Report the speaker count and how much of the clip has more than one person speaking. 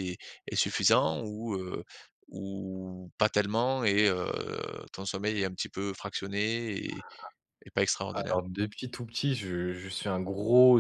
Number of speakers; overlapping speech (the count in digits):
2, about 2%